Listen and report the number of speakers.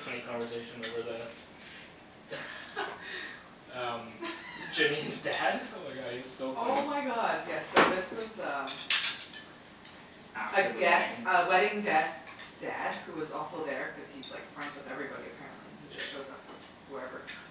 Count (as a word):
two